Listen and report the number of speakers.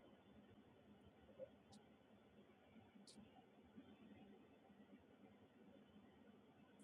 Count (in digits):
0